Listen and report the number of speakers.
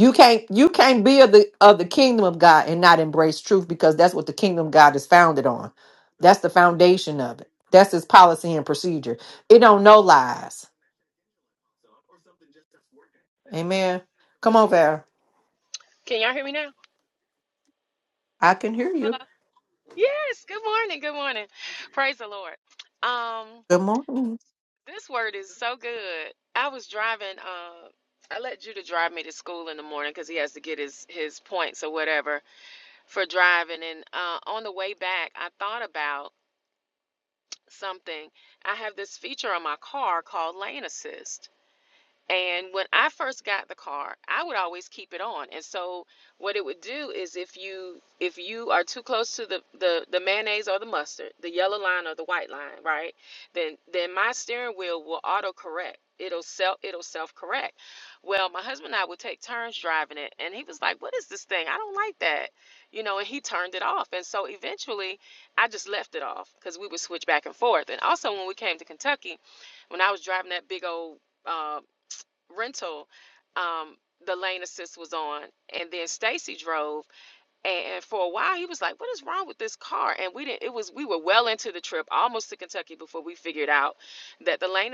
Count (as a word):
two